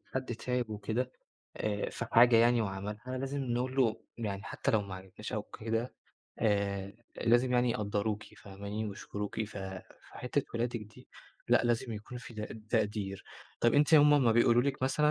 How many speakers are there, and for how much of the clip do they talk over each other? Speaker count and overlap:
1, no overlap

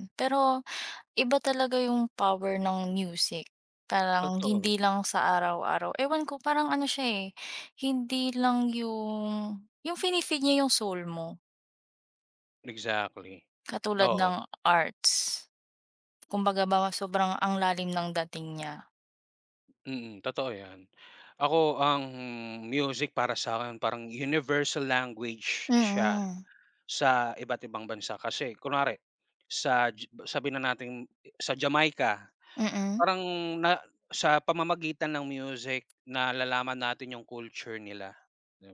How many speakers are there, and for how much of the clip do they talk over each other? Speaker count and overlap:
2, about 4%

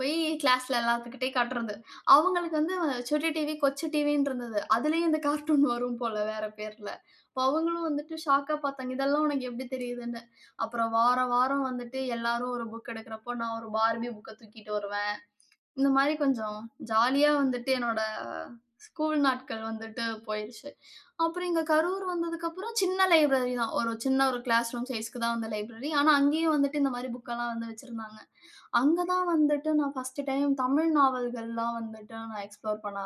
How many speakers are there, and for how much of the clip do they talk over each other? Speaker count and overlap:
1, no overlap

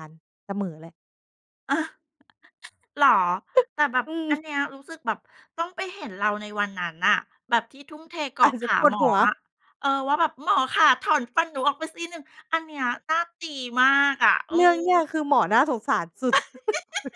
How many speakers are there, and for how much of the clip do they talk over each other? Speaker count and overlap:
2, about 7%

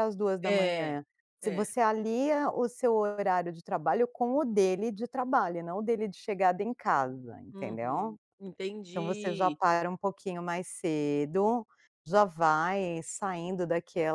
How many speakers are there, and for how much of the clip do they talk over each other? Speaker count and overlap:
2, about 13%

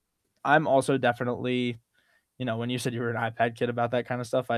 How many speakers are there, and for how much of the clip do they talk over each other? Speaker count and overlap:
1, no overlap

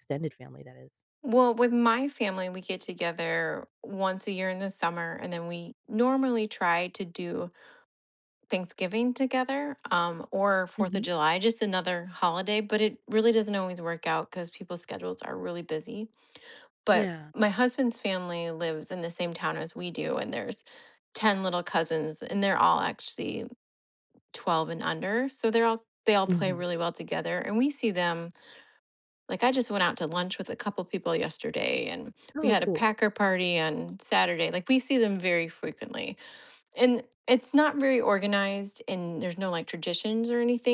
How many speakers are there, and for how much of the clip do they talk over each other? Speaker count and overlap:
2, about 3%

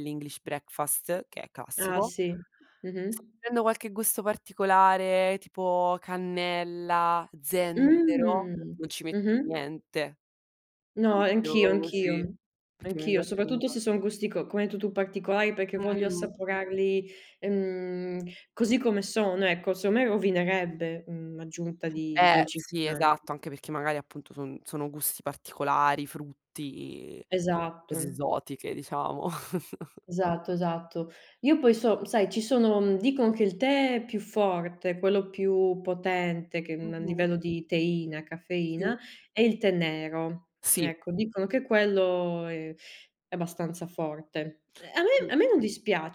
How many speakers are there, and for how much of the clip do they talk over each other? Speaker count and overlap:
2, about 10%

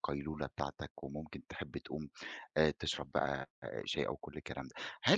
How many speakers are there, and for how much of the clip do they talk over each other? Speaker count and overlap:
1, no overlap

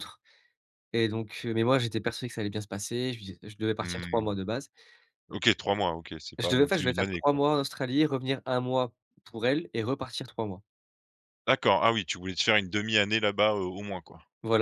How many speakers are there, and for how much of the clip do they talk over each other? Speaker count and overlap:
2, about 10%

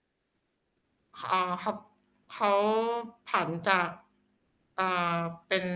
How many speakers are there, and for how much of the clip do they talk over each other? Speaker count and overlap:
1, no overlap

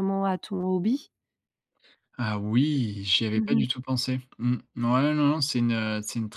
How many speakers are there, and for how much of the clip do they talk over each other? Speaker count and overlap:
2, about 5%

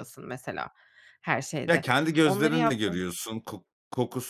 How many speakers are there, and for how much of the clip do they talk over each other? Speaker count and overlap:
2, about 21%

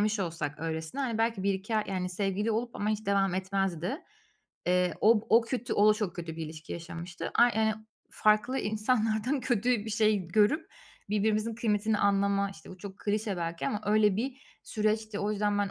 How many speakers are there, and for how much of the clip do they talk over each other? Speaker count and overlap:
1, no overlap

